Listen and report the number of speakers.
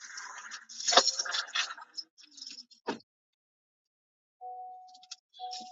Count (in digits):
0